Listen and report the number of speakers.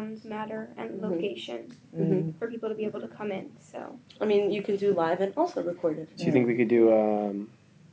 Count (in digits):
3